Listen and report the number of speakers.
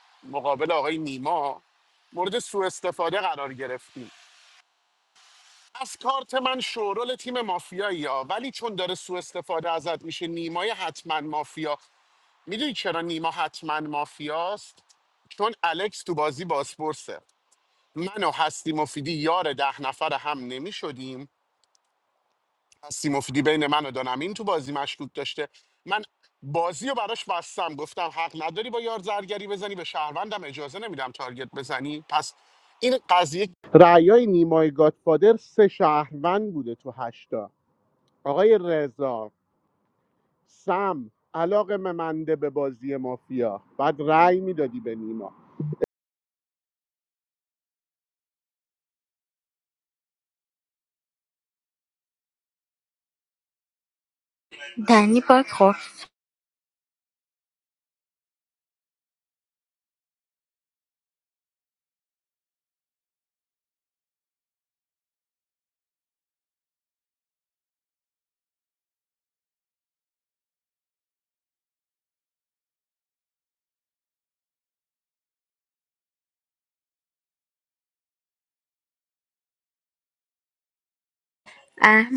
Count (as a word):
two